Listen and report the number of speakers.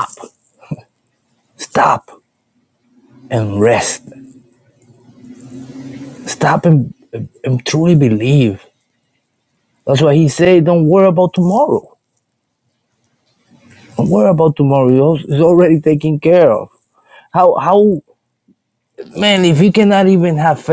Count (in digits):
1